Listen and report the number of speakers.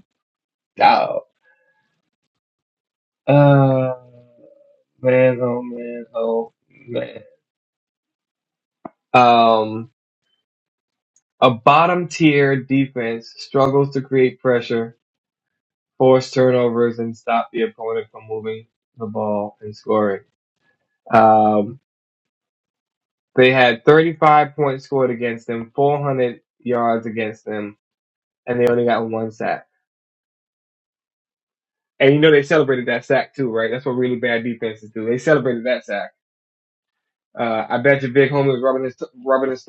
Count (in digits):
1